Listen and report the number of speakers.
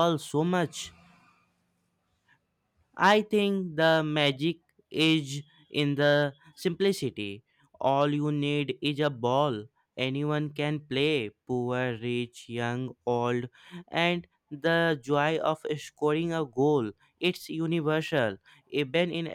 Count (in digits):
1